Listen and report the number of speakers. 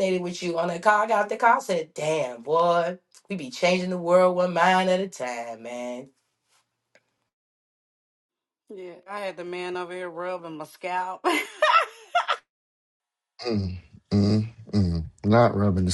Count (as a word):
three